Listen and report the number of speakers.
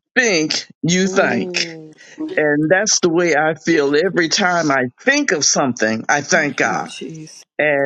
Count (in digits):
2